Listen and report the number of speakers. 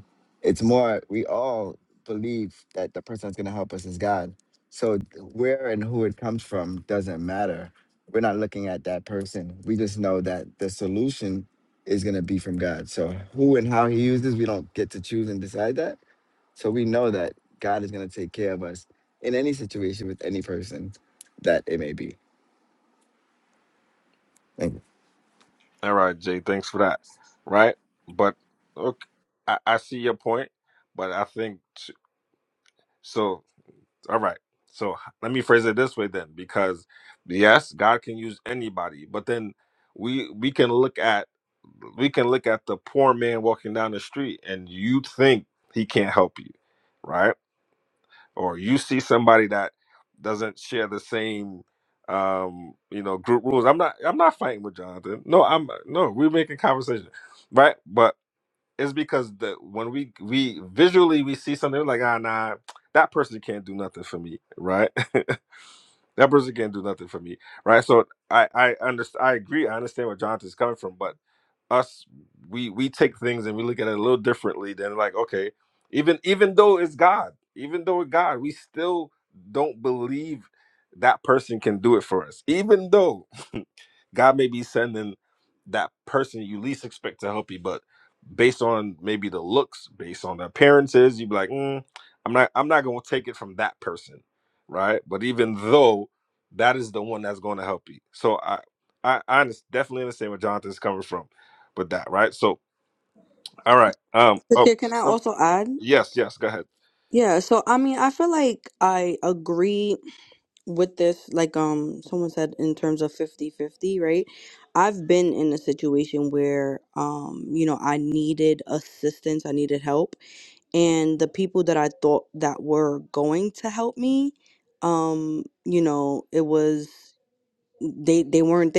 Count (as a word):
three